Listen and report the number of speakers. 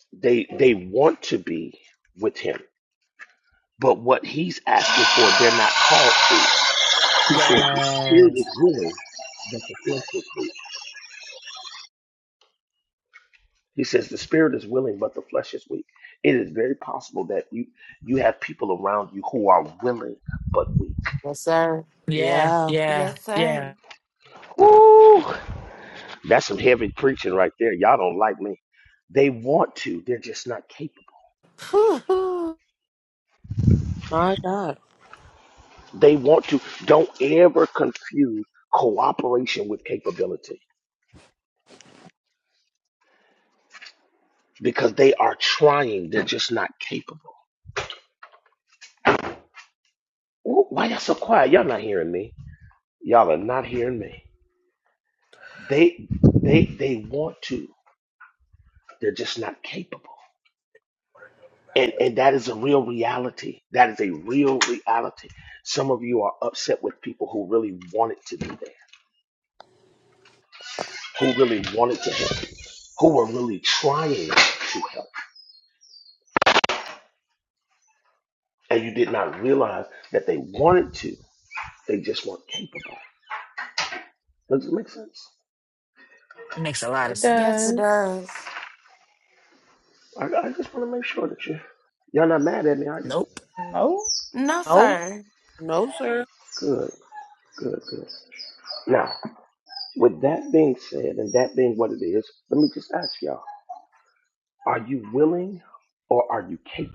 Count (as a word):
six